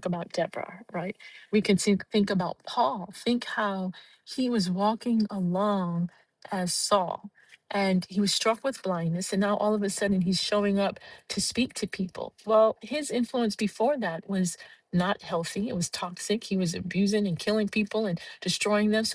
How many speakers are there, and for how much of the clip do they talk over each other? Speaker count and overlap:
1, no overlap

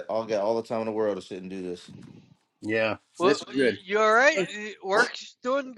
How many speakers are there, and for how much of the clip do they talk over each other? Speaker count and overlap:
3, about 6%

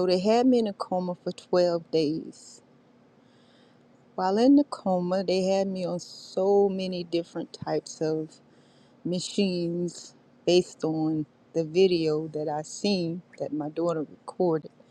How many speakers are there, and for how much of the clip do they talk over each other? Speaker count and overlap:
1, no overlap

